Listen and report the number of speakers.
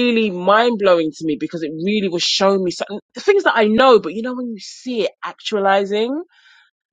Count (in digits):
1